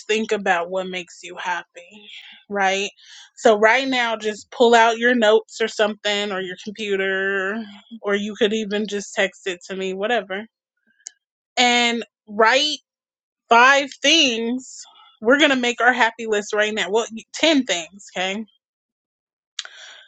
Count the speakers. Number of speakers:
1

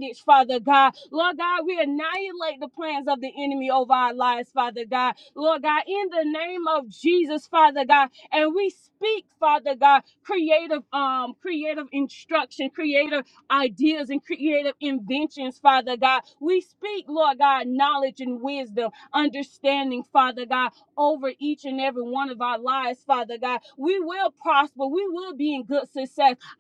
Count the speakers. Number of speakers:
1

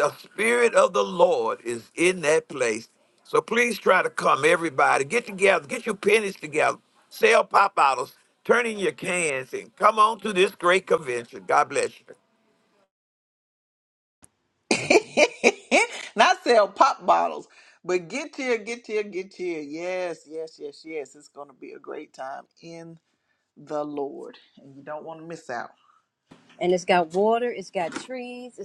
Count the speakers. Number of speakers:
3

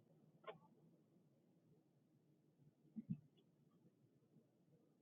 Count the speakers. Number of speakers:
0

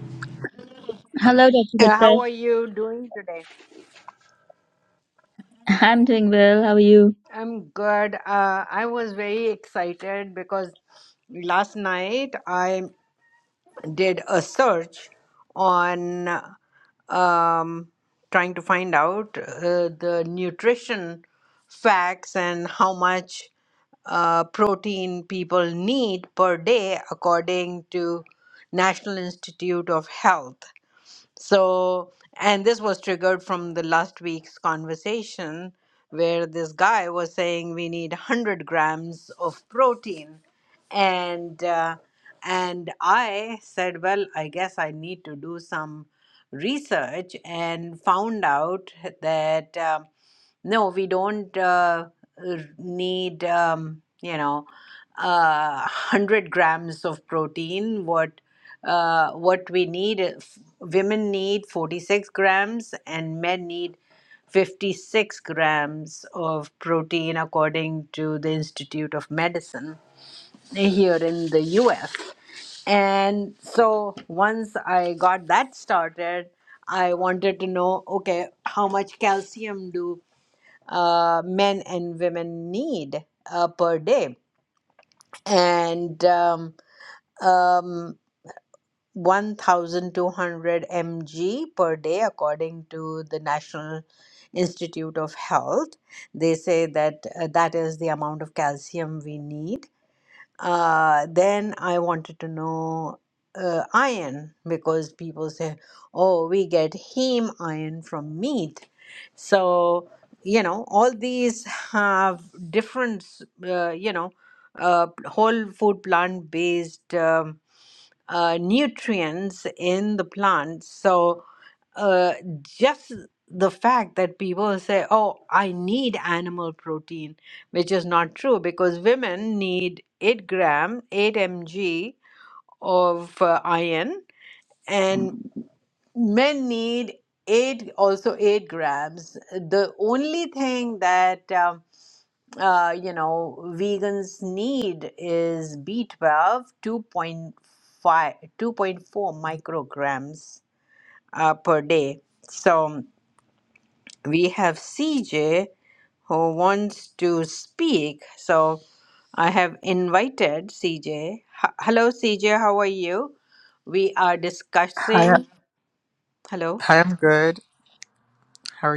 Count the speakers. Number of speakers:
3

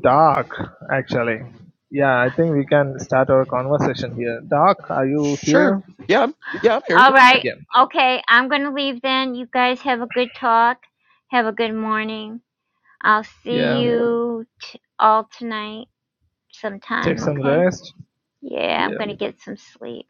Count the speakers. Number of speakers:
3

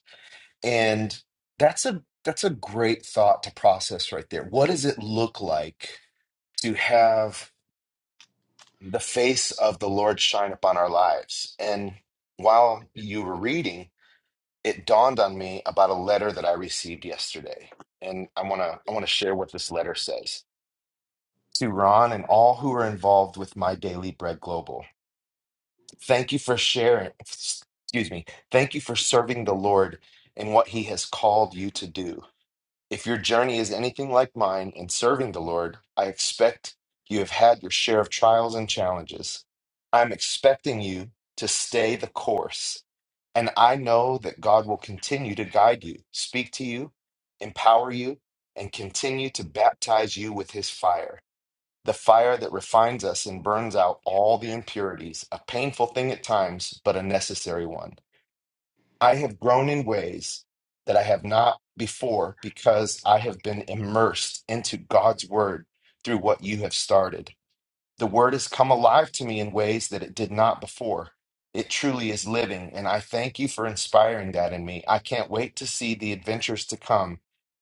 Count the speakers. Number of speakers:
1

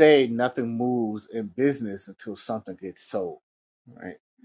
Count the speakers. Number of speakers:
1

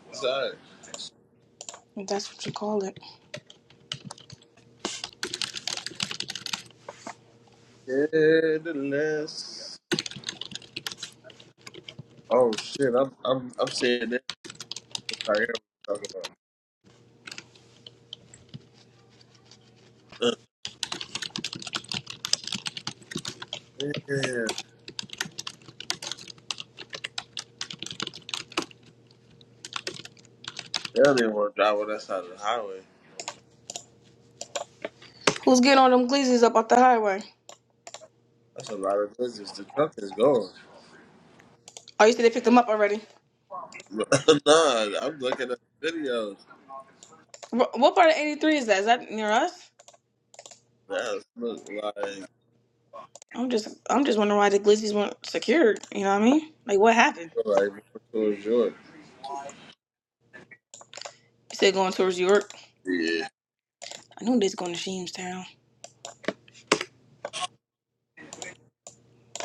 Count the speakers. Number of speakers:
2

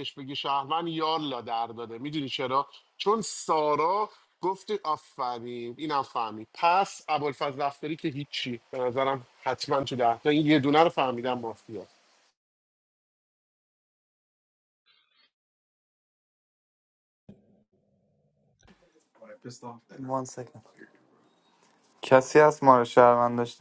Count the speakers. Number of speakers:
2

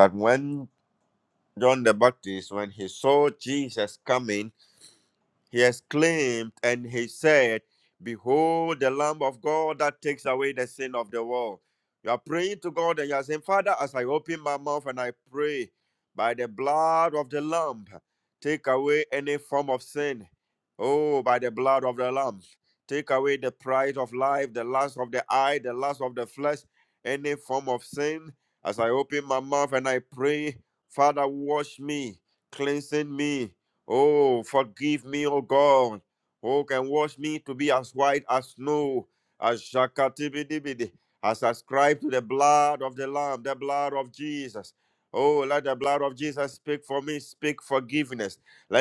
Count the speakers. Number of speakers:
1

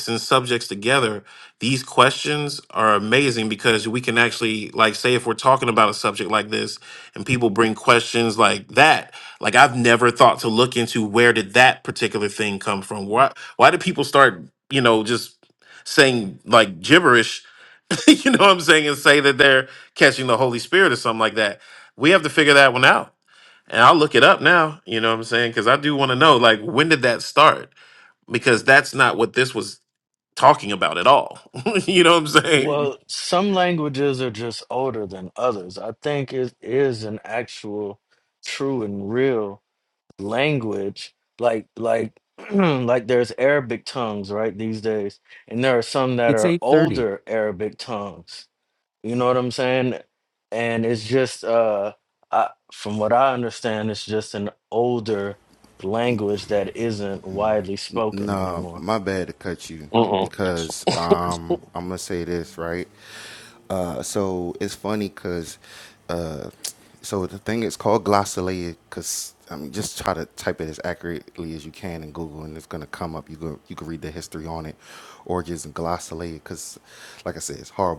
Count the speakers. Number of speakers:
3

